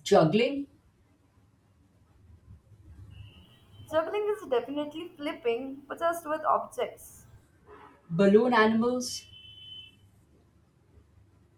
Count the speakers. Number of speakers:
2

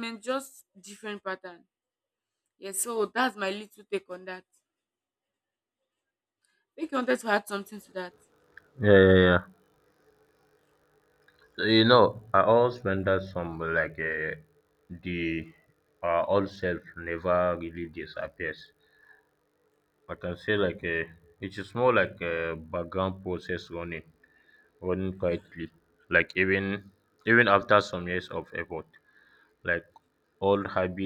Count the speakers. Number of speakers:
2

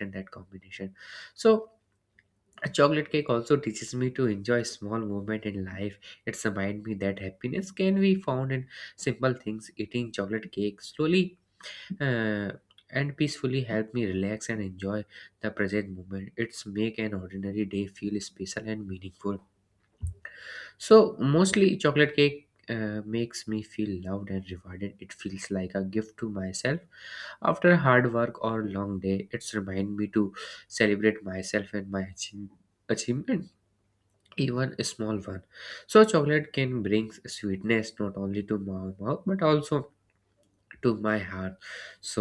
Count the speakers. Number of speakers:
1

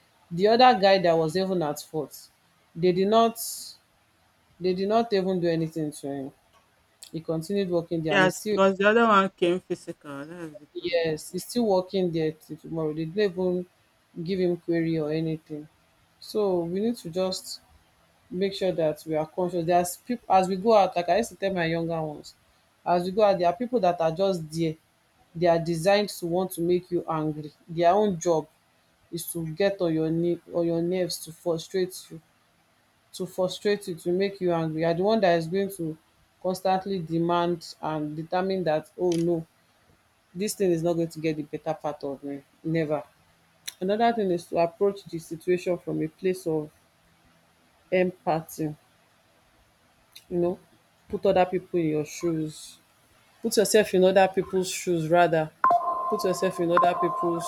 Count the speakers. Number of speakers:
2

